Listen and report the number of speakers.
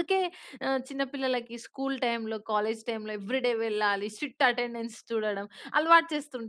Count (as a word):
one